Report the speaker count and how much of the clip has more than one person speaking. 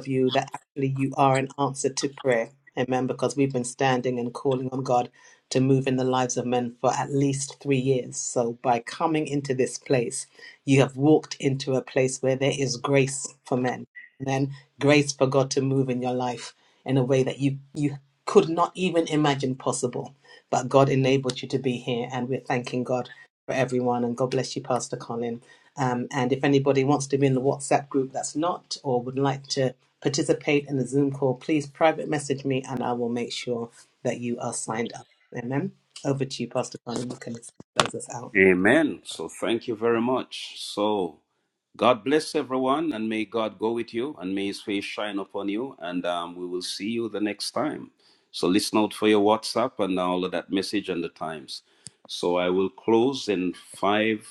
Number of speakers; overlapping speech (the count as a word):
two, no overlap